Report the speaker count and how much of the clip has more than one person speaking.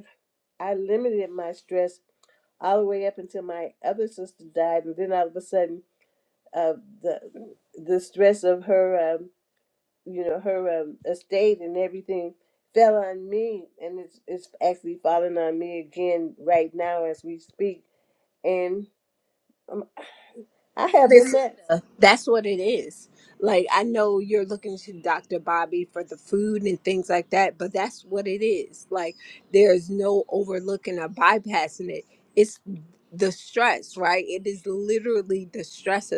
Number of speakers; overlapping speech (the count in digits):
2, about 1%